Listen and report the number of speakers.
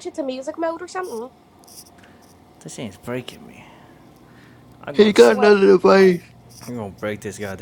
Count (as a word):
three